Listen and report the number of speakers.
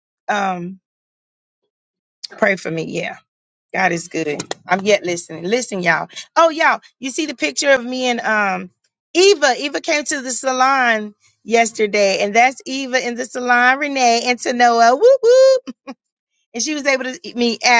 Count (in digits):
1